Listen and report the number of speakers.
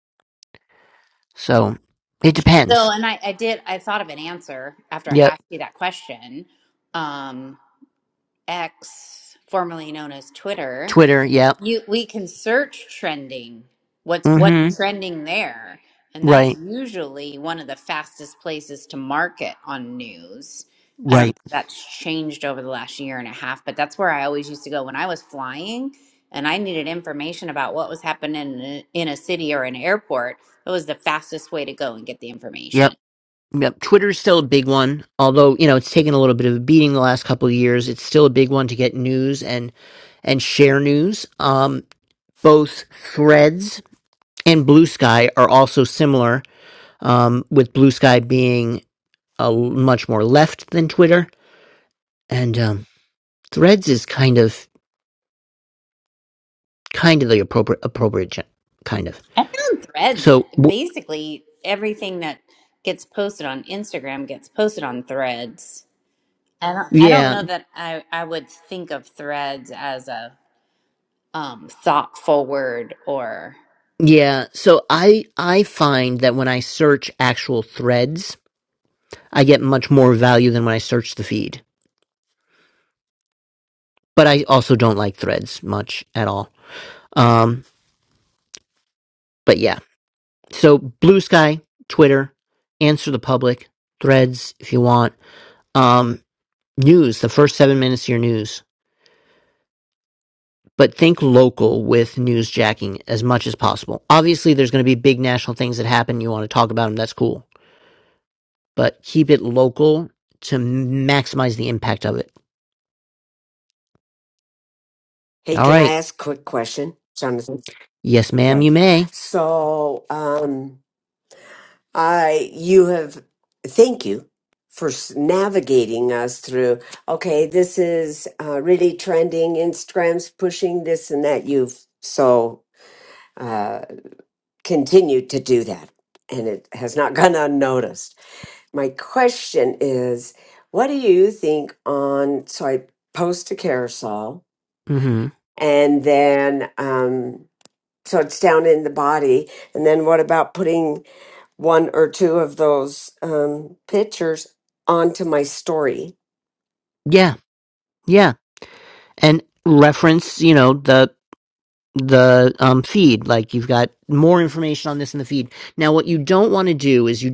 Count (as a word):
three